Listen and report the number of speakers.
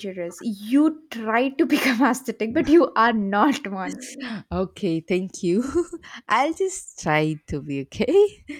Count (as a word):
two